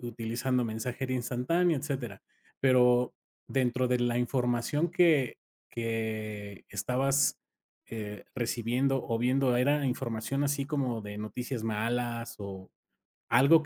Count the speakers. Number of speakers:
1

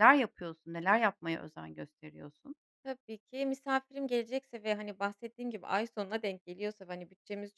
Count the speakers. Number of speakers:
2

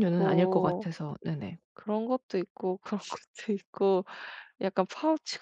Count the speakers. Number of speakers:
2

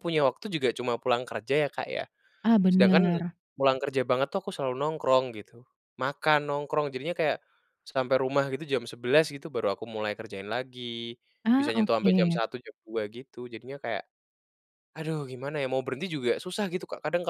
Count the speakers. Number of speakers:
2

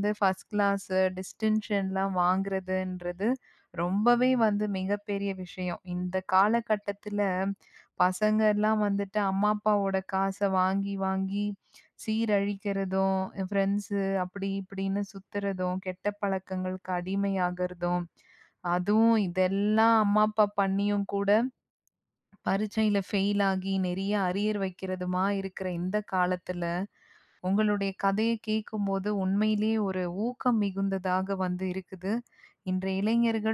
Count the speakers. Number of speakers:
1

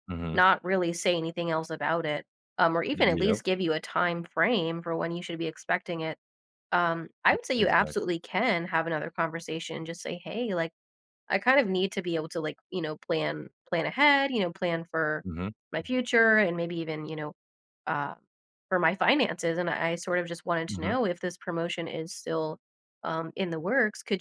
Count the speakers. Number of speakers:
2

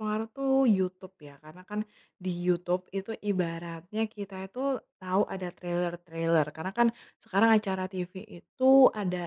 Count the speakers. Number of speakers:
1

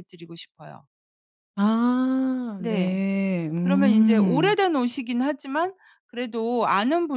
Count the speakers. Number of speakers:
2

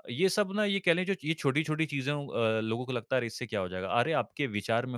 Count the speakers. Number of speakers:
1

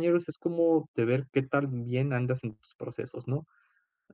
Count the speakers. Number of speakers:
1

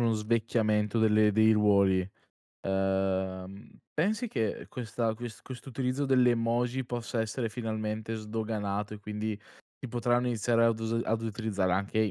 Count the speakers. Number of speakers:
1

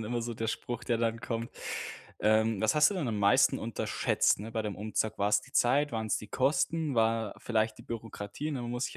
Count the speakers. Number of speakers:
1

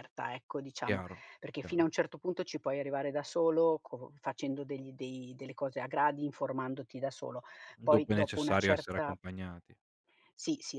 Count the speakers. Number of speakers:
2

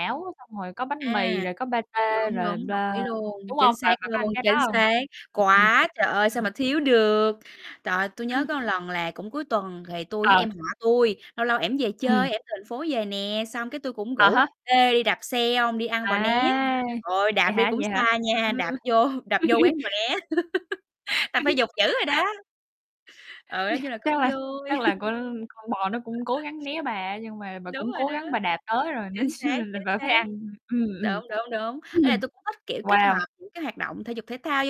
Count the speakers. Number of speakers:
2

